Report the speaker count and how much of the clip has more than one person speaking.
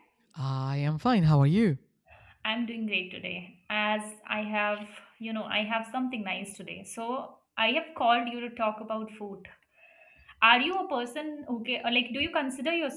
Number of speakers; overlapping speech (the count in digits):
2, no overlap